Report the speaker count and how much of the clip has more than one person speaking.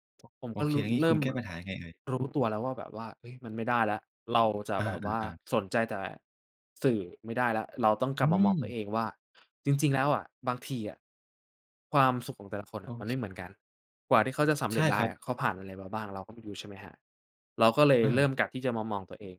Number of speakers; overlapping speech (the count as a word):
two, about 12%